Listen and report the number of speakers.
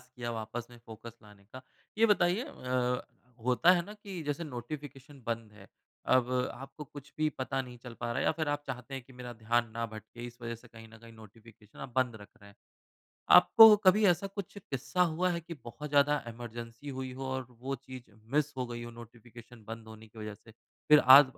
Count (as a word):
one